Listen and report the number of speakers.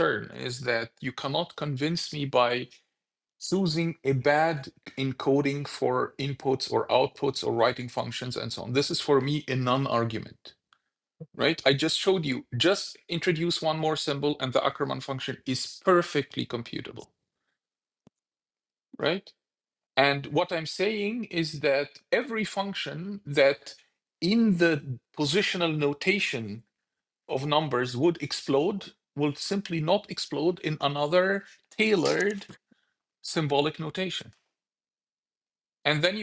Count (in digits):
1